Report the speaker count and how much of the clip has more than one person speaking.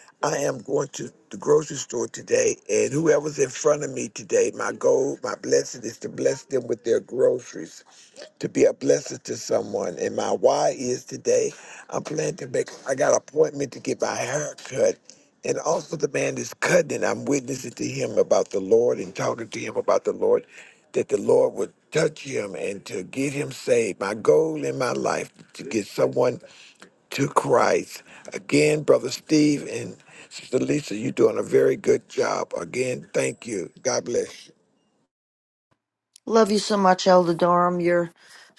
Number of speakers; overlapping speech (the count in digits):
2, no overlap